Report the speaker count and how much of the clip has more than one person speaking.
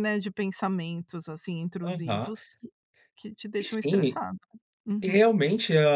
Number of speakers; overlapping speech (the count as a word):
two, about 22%